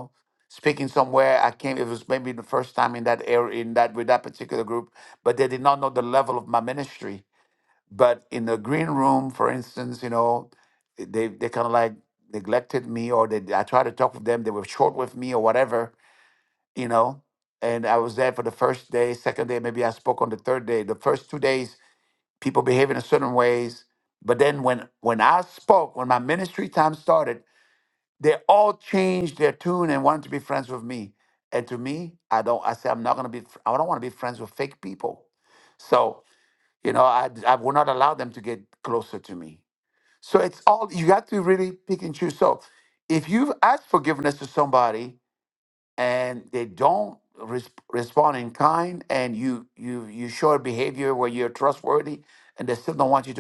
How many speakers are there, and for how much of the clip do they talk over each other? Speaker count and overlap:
1, no overlap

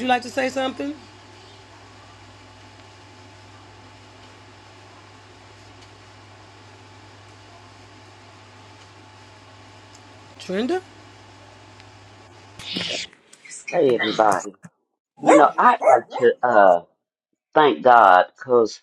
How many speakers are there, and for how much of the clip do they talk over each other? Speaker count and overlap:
2, no overlap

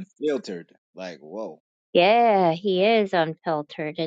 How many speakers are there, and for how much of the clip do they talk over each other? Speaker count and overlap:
2, no overlap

